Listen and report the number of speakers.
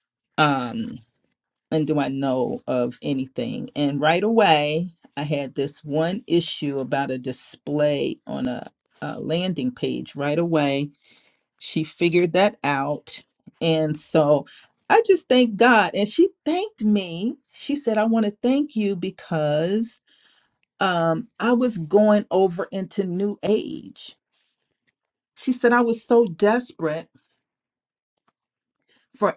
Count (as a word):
one